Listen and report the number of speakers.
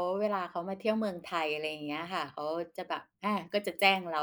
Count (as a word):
one